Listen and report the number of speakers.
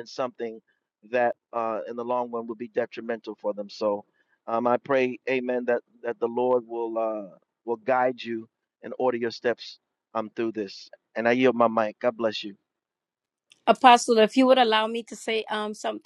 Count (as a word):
two